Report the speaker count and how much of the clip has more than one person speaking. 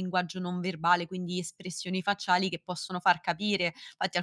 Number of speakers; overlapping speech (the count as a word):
one, no overlap